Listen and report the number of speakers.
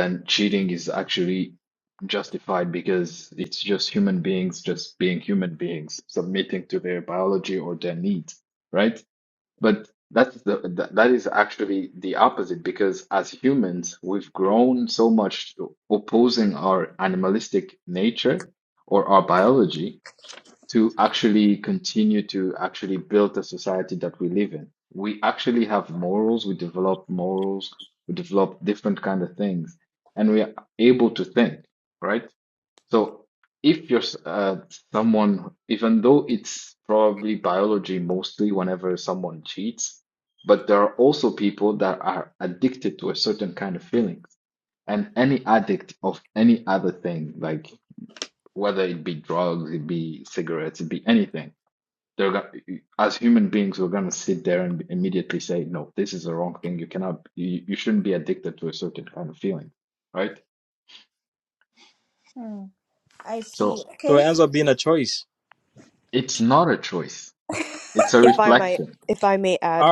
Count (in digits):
4